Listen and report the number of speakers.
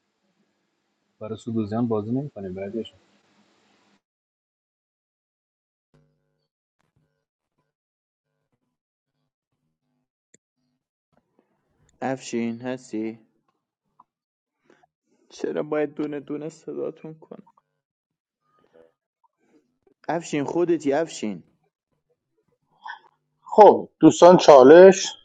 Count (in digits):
3